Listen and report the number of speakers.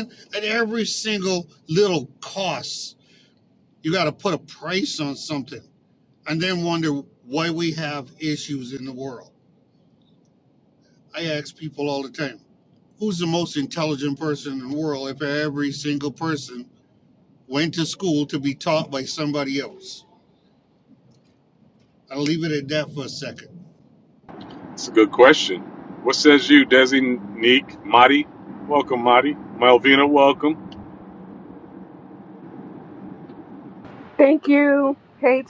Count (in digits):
3